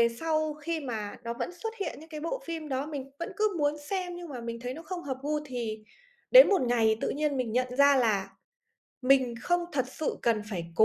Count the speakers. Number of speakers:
one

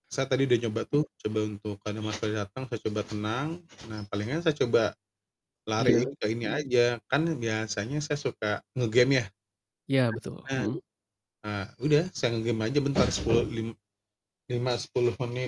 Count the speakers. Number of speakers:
two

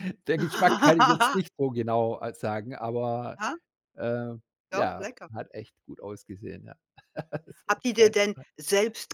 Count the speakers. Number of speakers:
two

